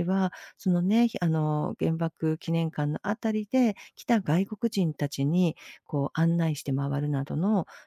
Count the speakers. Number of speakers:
1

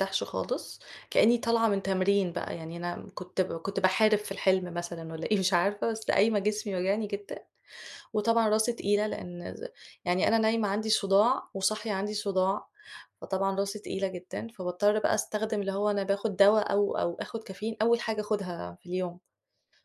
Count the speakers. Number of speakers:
1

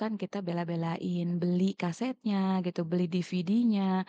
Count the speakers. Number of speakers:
1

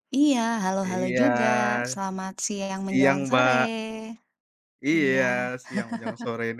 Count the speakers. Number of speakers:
2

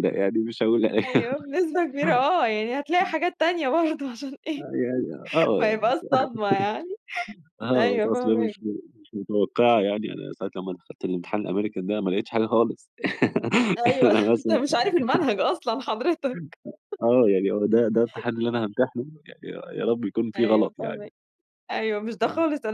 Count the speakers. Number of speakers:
2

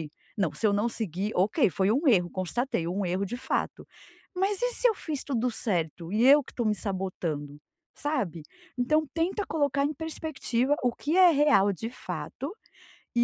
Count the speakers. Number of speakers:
1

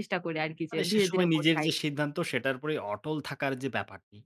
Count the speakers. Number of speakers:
2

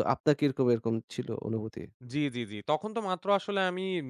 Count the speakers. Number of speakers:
2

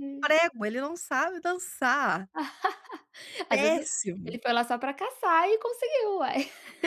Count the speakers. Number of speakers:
2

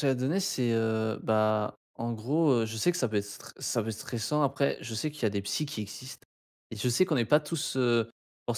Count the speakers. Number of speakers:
1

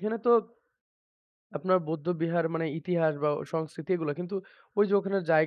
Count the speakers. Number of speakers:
1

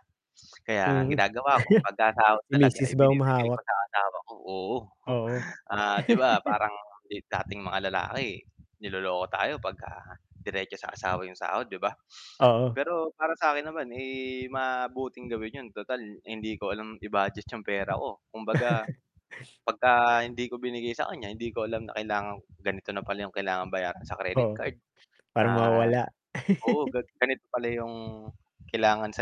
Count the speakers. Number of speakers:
2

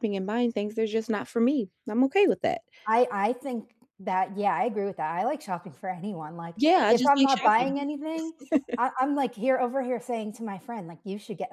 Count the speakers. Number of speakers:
2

